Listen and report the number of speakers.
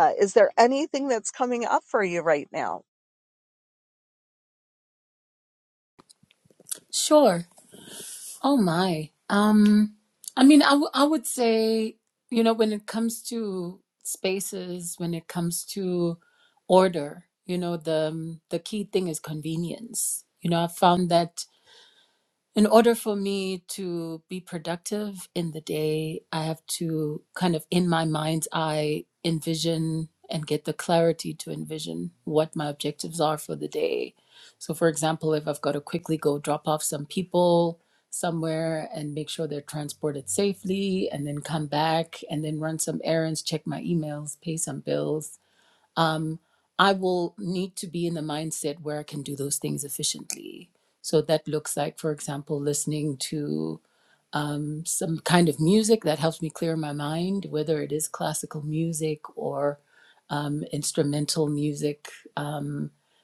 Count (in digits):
2